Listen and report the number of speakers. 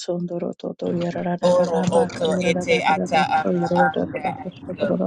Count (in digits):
2